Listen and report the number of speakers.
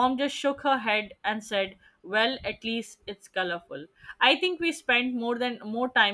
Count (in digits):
1